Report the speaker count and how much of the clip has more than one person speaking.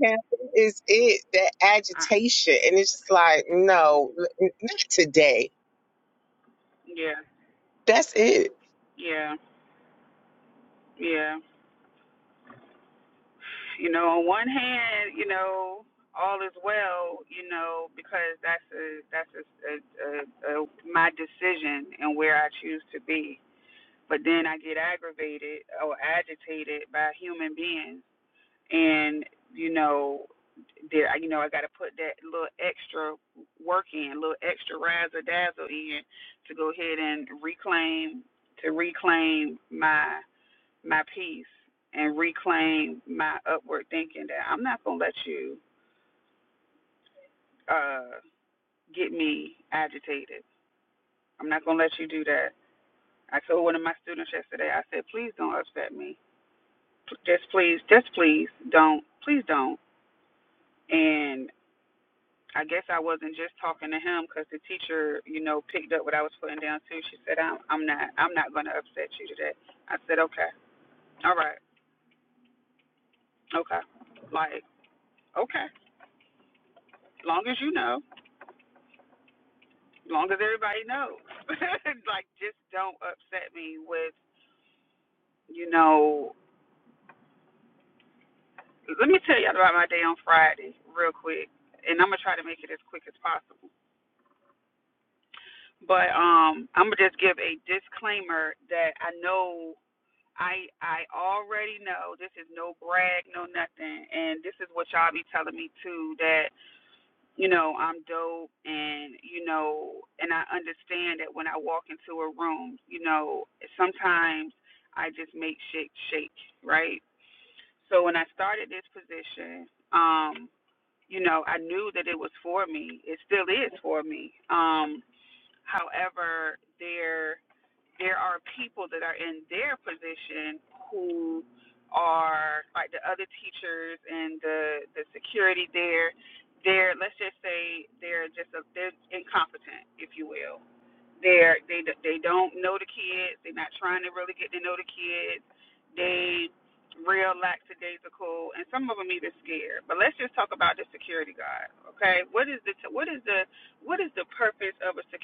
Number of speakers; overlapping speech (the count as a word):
two, under 1%